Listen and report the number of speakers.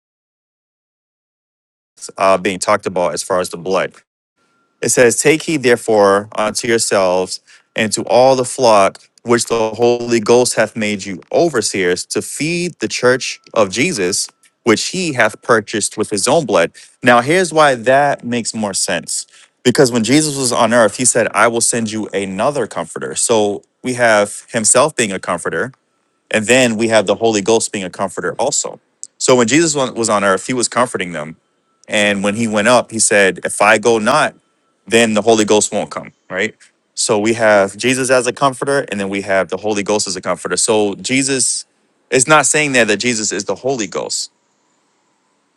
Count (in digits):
1